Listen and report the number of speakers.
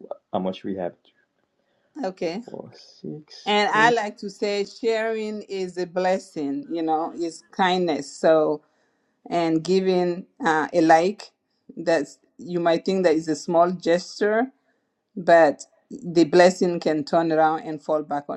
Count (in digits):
2